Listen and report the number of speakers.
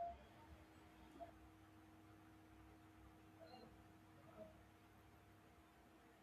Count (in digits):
0